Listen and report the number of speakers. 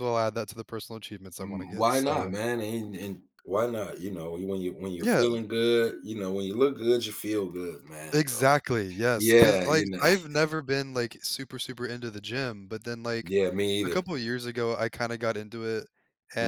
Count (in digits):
2